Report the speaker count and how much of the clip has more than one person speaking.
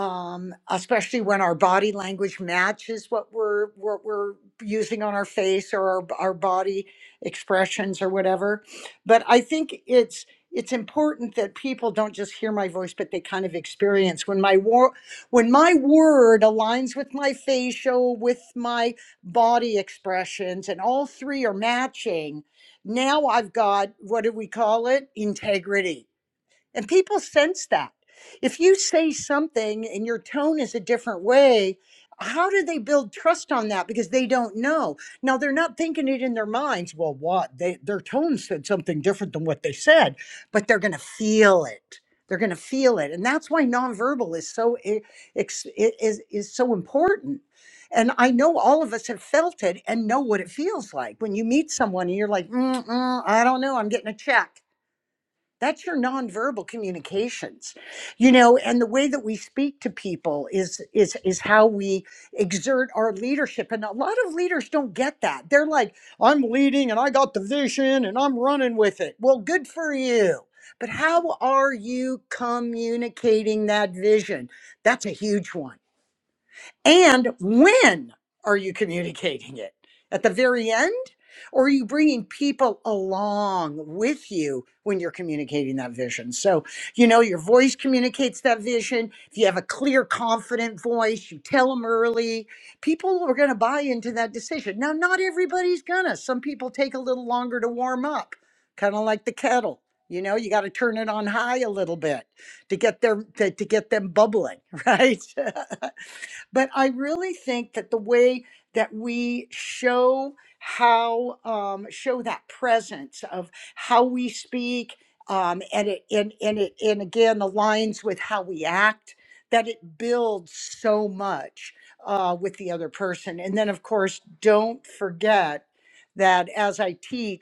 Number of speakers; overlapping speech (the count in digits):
1, no overlap